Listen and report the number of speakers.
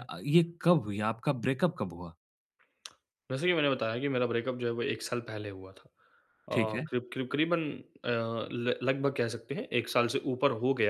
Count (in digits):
2